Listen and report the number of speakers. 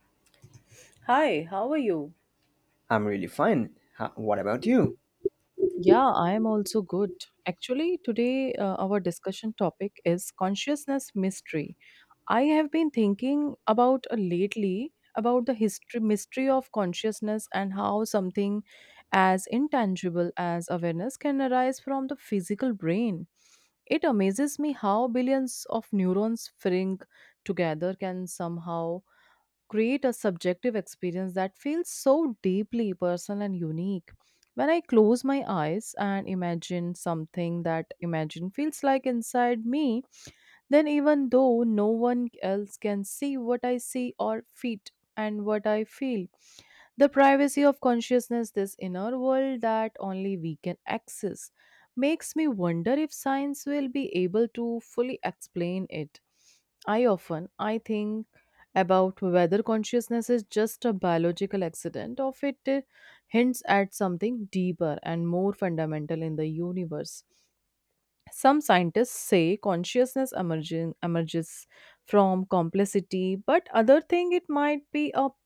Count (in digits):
2